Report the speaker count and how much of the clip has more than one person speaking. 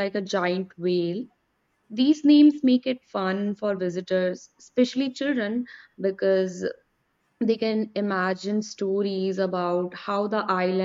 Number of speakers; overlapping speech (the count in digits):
1, no overlap